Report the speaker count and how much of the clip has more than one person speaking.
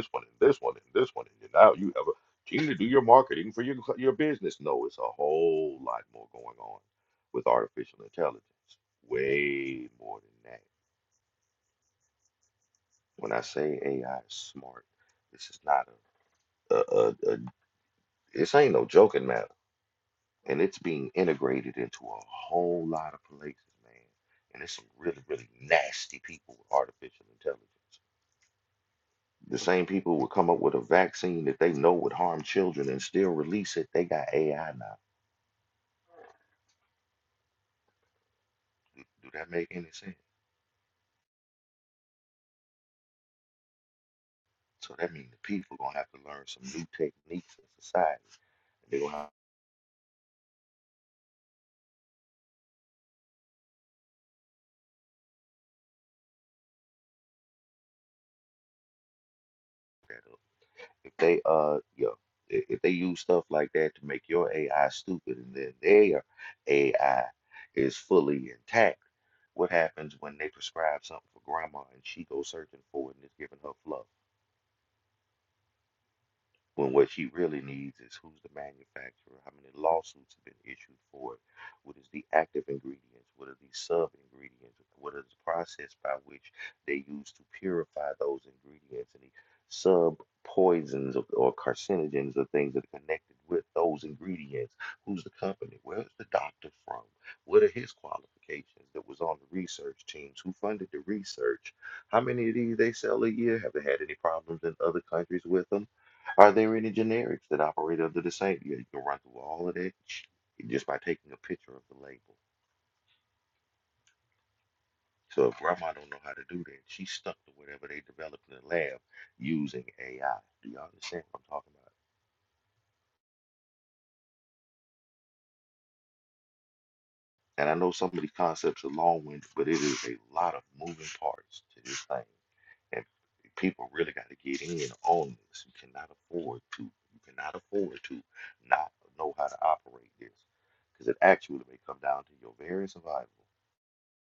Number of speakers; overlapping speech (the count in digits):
1, no overlap